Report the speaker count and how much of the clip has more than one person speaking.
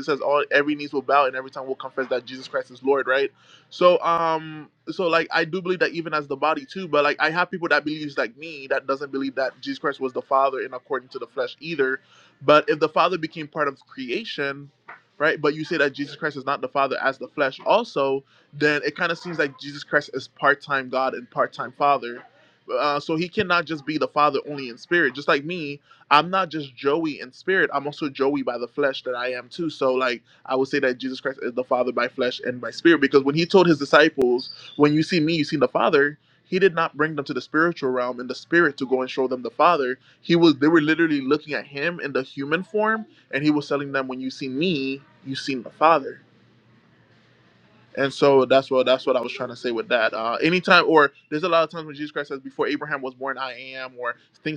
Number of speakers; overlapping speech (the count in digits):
1, no overlap